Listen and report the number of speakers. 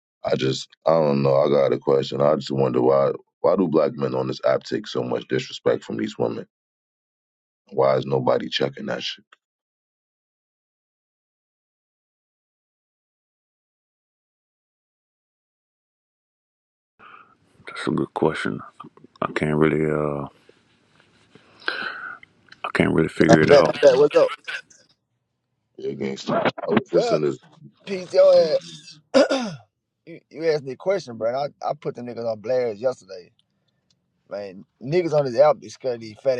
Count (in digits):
3